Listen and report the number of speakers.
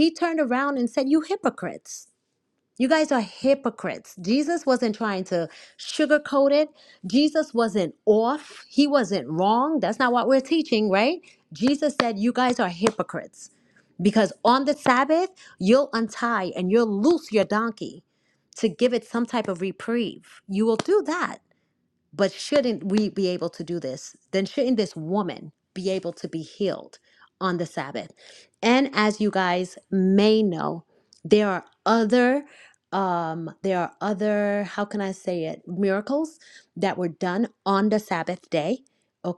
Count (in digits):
1